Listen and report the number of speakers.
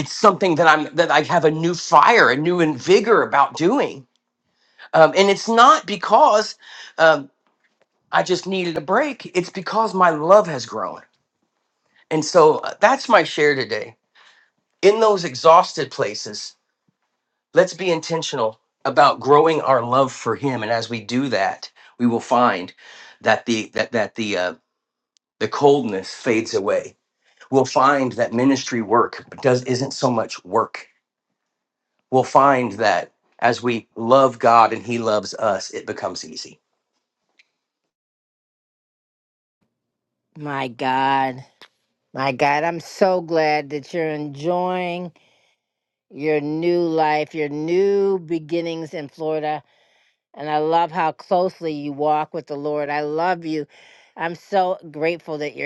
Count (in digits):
2